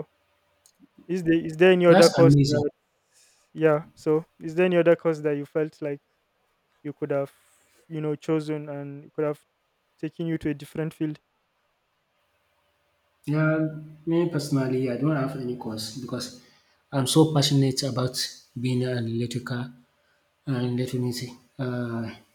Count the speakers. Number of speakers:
2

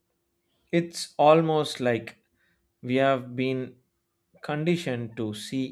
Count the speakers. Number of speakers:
1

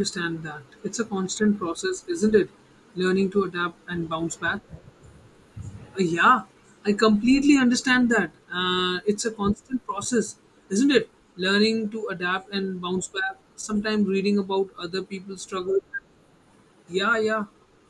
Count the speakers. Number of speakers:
1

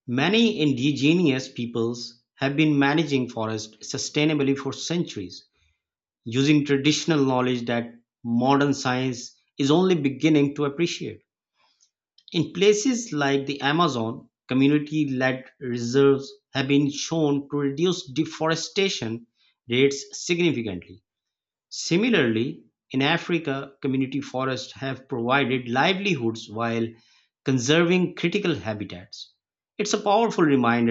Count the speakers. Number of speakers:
1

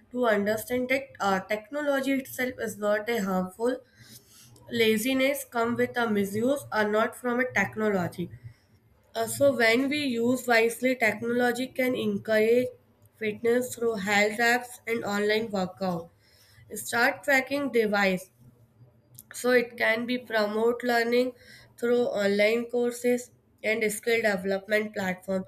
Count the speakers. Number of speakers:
1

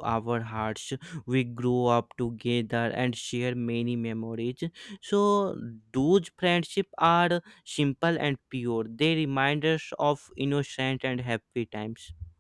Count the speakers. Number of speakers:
1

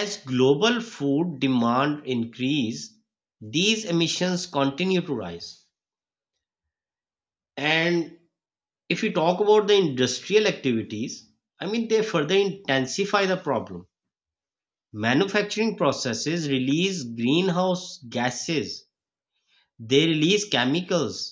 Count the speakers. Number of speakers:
1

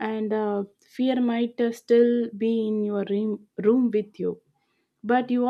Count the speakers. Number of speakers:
1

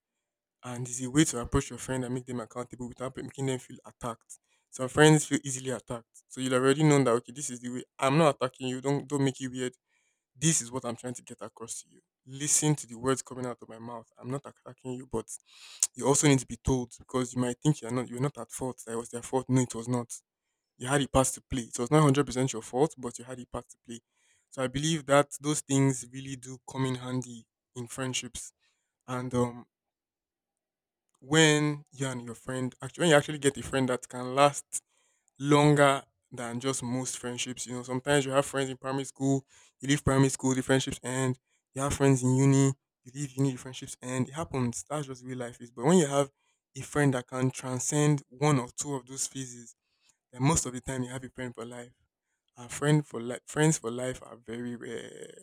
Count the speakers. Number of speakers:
1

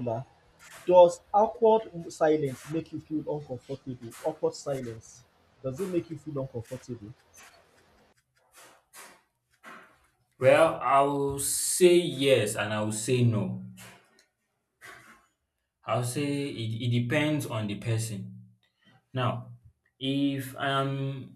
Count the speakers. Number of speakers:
2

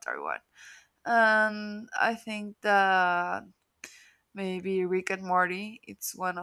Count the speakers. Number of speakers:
1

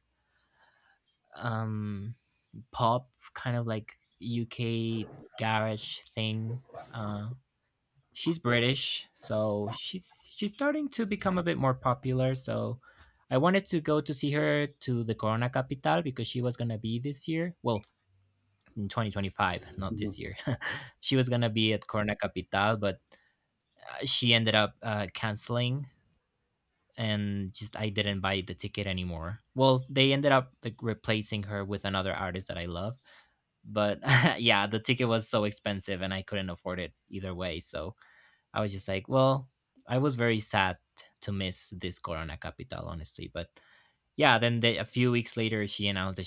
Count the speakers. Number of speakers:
1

